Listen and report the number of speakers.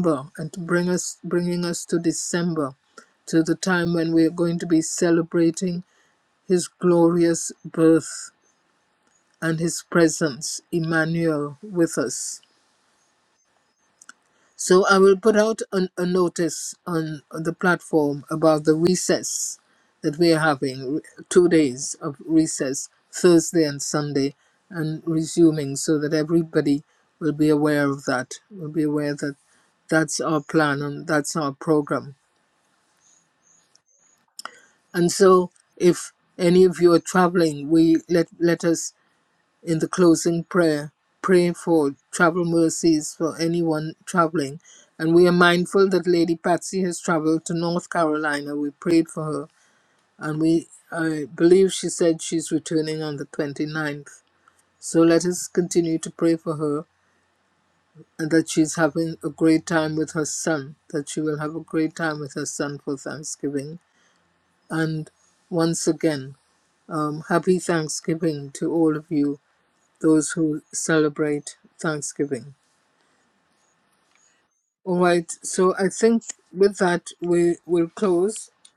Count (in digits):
1